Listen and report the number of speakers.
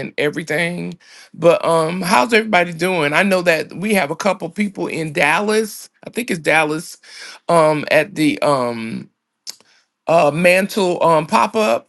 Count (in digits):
1